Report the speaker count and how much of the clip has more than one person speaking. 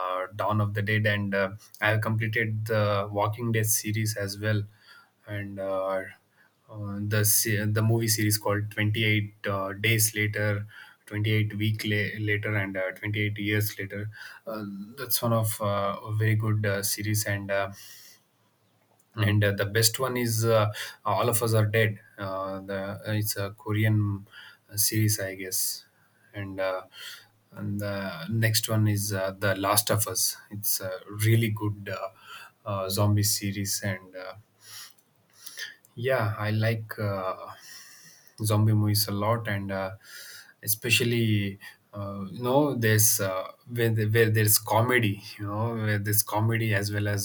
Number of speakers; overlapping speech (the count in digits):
1, no overlap